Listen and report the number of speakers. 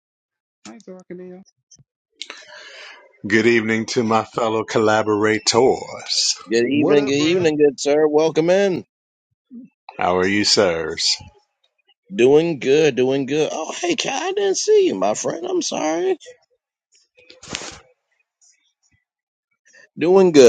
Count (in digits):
3